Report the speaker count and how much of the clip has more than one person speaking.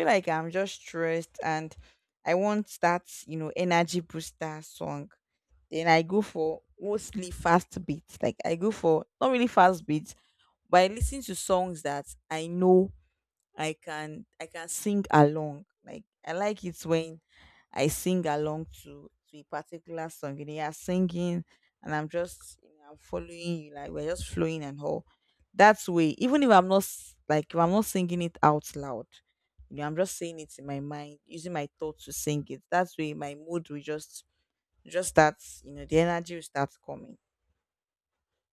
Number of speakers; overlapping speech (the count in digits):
1, no overlap